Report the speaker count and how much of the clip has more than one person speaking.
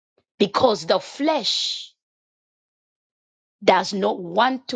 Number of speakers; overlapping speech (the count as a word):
one, no overlap